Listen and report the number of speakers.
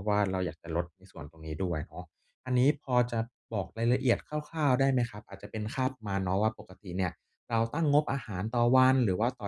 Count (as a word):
one